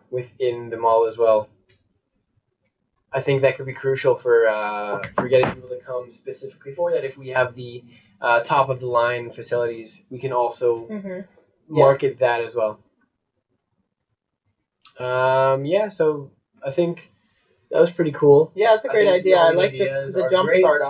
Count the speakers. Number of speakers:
two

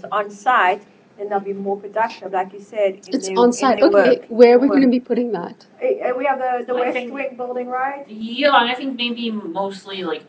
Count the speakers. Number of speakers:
three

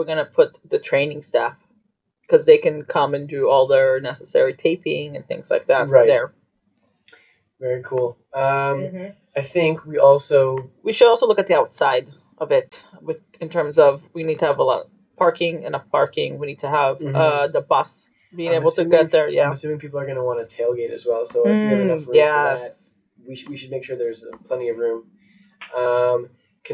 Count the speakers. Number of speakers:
two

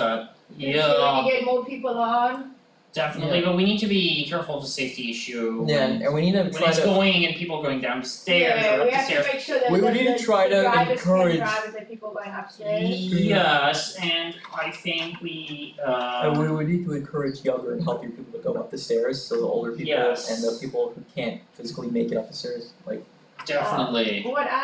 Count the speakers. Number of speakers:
three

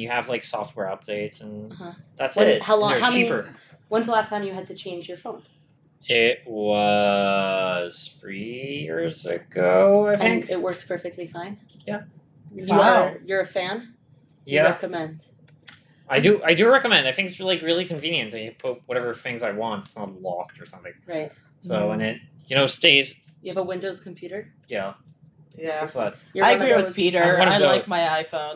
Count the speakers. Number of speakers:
three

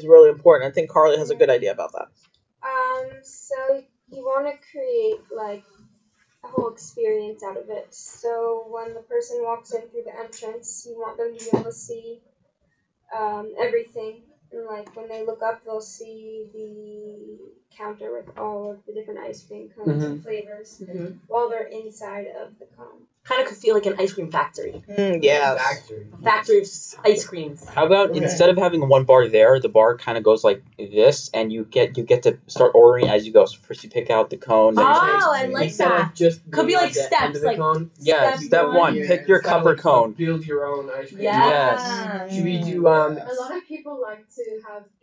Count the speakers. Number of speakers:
six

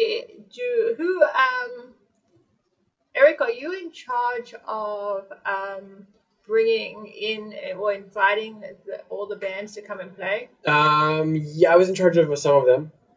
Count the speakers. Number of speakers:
two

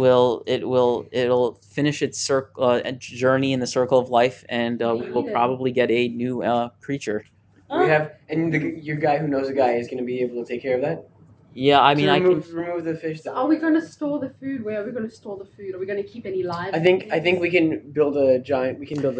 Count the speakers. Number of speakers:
three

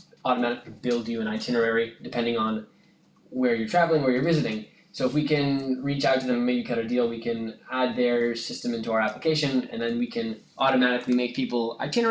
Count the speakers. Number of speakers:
one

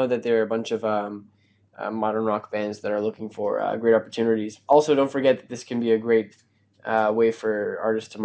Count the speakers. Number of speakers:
one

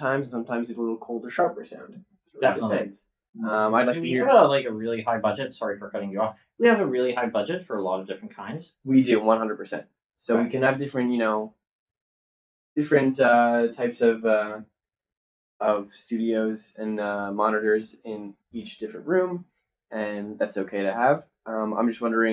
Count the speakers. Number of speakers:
two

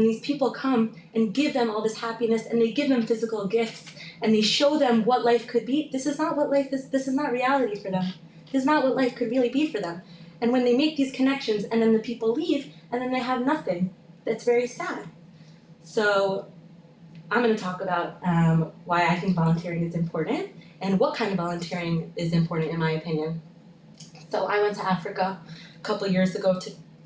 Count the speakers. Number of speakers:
one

